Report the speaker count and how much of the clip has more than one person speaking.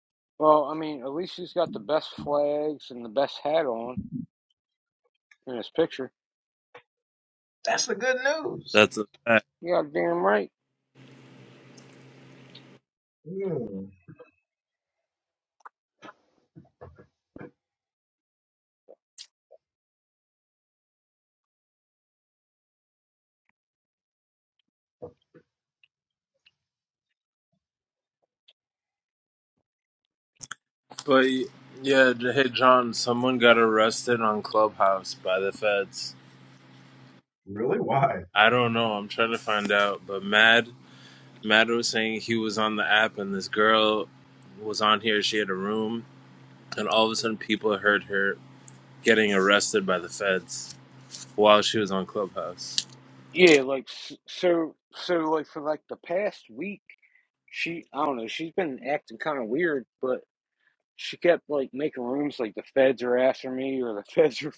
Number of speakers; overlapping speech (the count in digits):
3, under 1%